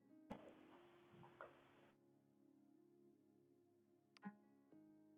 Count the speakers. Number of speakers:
zero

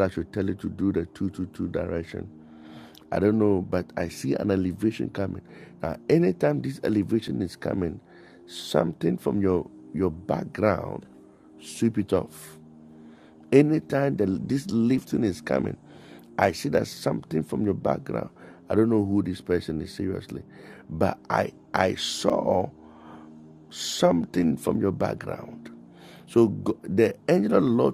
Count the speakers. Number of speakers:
one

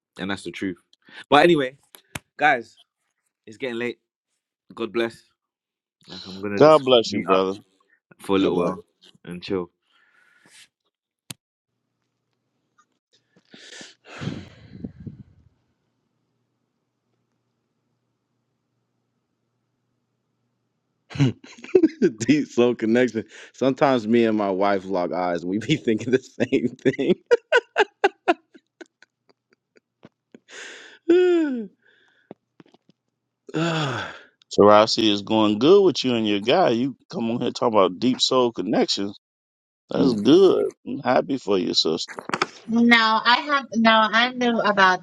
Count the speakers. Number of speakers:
four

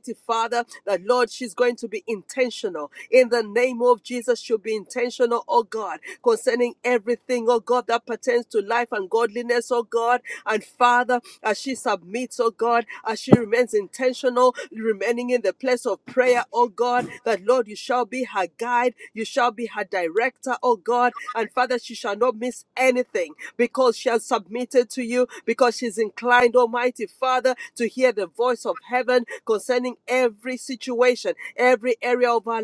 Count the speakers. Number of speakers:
one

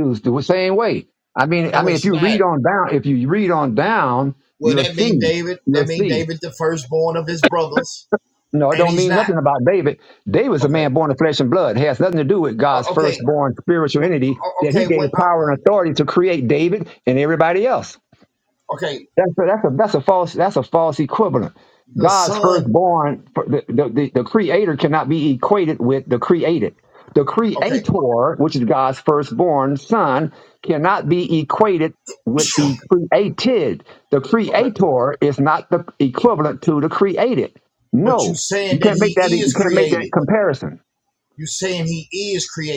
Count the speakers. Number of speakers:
two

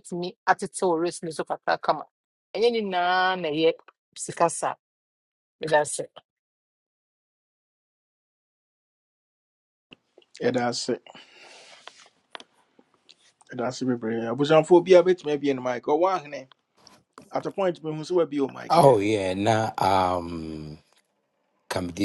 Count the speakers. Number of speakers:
three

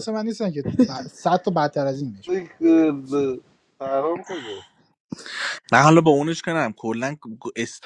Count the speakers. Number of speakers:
three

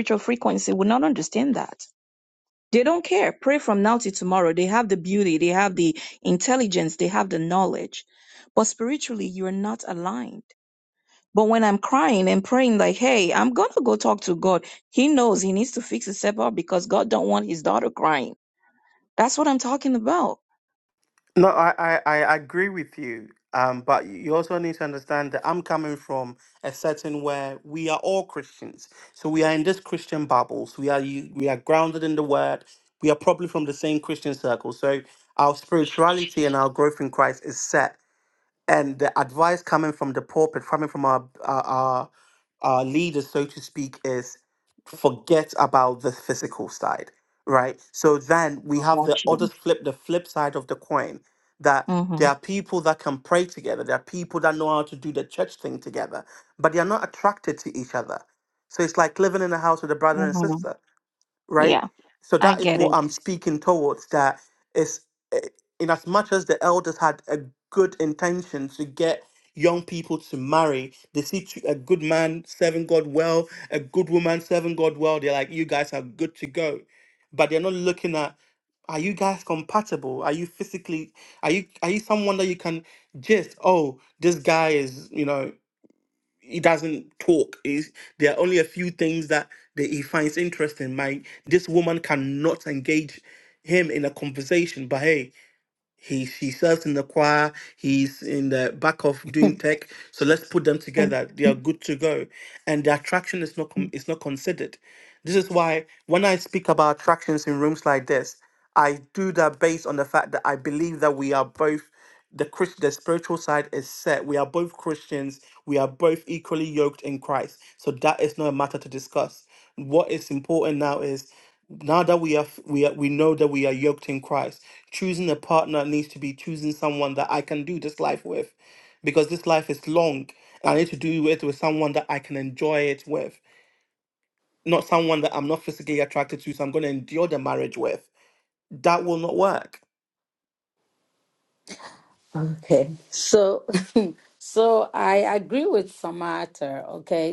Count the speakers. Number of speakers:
three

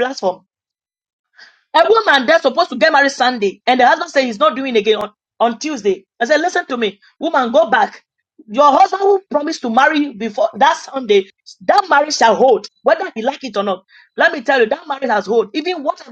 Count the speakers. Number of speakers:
one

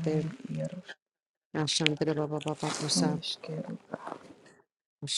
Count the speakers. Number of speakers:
two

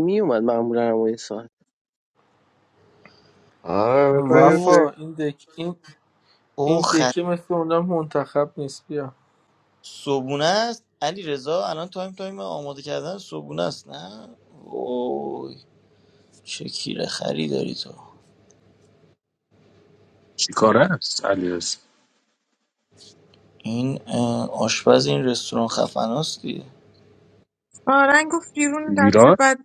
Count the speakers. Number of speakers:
six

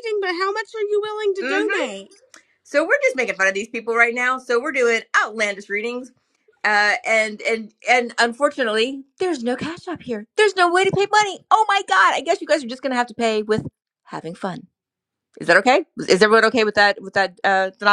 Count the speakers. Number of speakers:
two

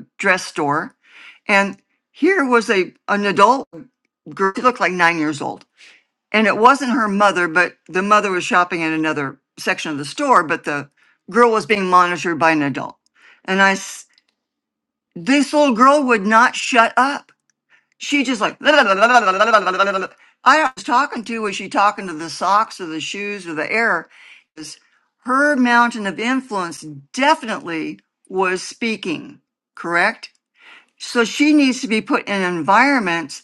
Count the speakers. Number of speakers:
one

